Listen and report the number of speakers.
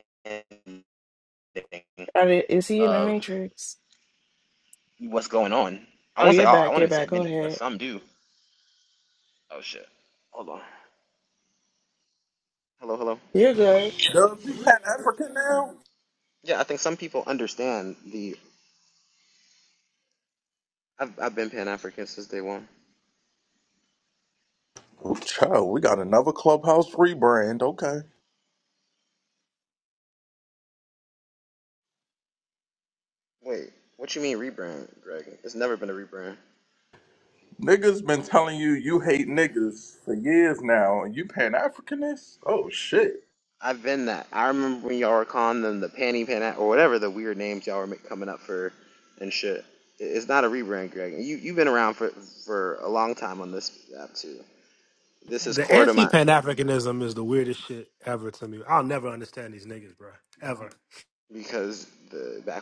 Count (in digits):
4